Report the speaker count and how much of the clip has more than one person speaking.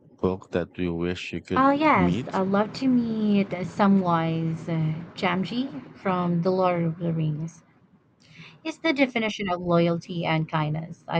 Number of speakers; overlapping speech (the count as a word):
two, about 8%